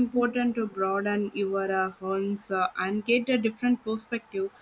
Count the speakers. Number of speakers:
1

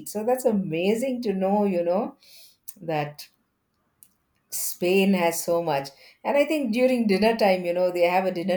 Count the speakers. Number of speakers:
1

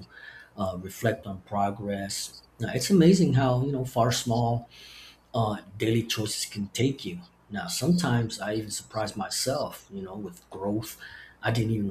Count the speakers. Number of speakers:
1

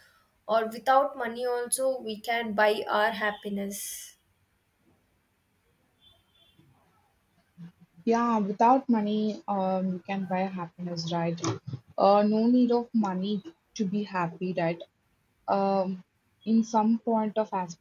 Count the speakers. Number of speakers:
2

